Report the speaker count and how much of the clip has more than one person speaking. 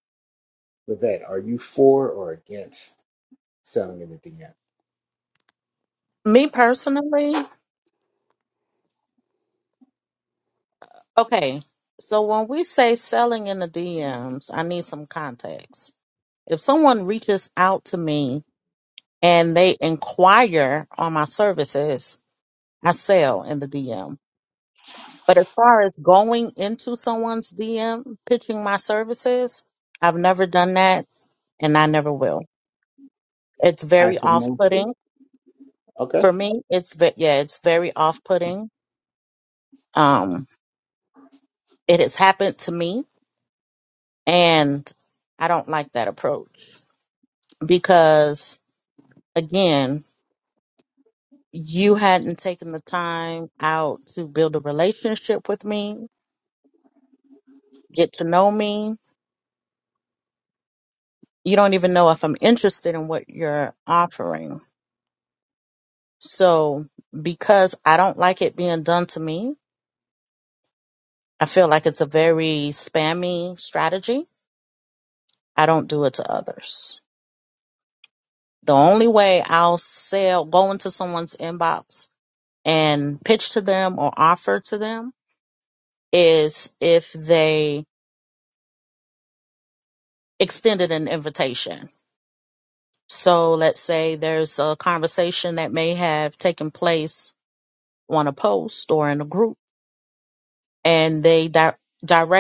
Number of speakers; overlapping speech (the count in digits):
2, about 1%